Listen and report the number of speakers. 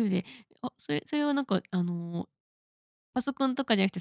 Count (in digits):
1